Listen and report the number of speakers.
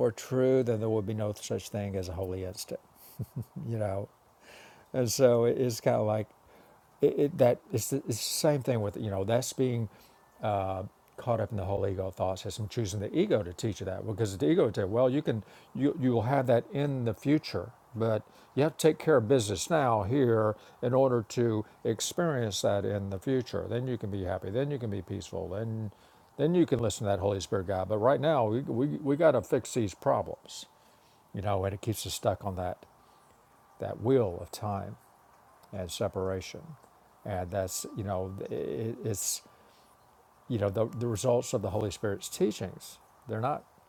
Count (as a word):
one